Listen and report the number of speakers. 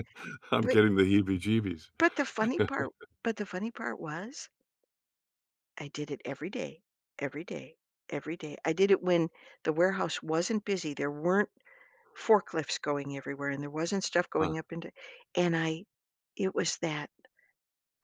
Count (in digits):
2